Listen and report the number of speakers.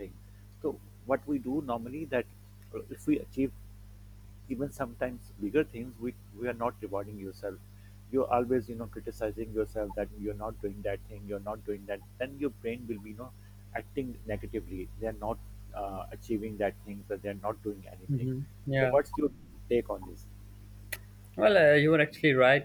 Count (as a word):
two